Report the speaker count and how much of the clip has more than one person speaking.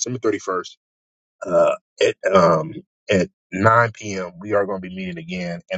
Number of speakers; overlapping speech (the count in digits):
1, no overlap